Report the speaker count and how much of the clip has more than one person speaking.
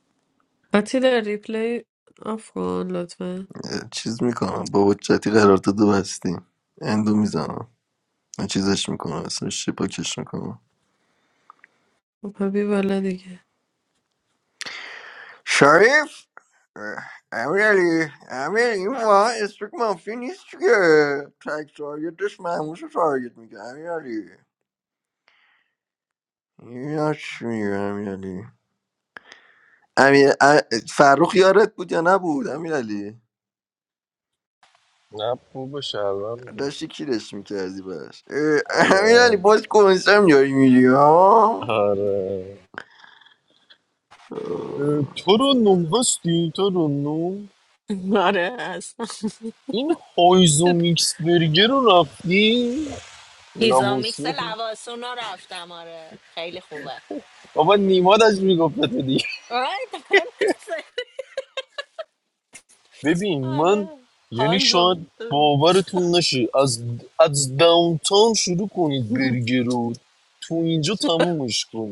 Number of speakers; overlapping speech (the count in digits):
4, about 4%